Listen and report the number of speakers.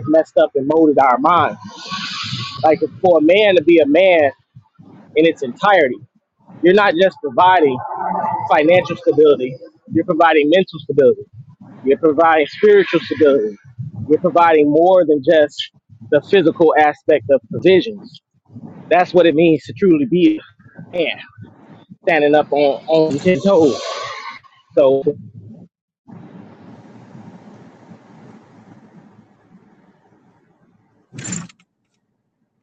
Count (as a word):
one